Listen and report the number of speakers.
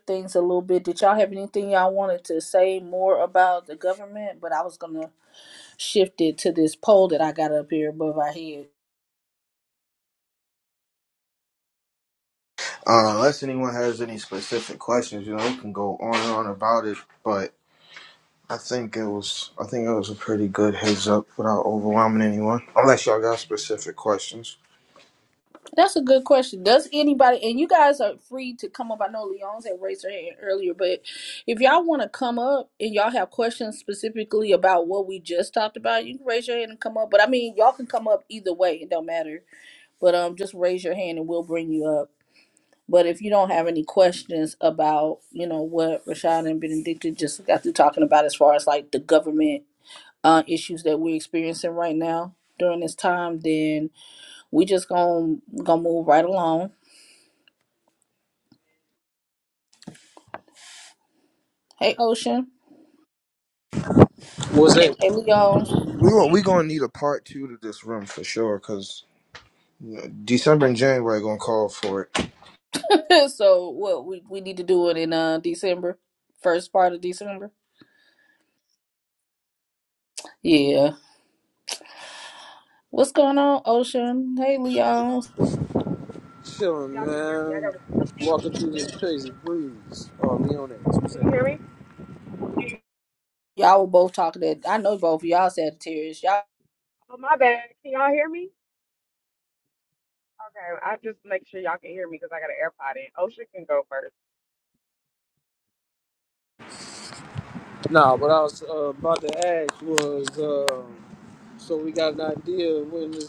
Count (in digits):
4